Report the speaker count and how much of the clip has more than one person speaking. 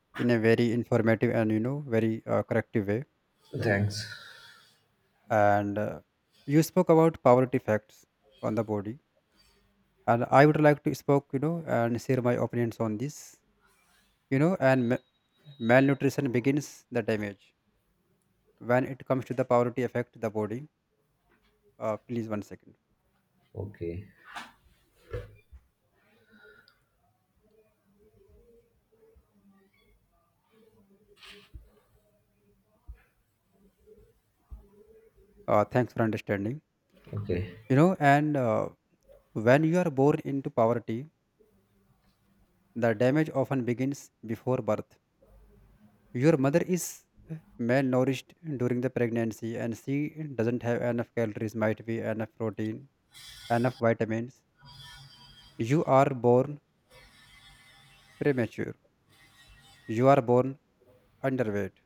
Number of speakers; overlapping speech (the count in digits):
2, no overlap